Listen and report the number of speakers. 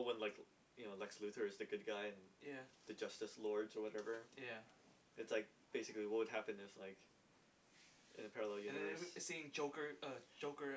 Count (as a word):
two